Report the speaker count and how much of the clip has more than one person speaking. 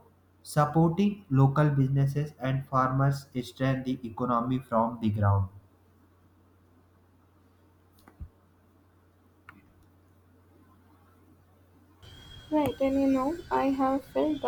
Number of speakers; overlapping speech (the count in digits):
2, no overlap